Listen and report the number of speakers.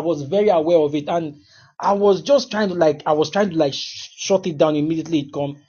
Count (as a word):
one